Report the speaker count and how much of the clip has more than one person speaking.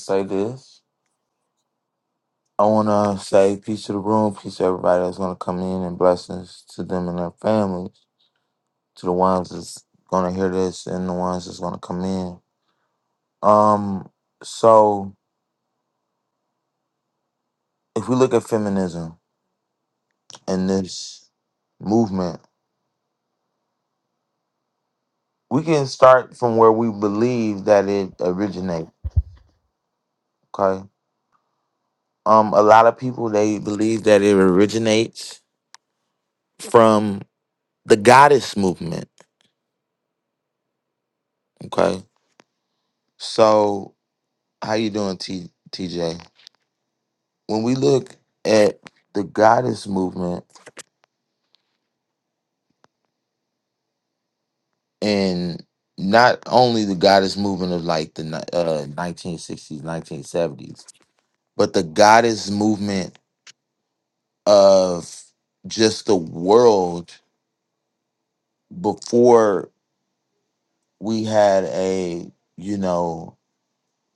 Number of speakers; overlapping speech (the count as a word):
one, no overlap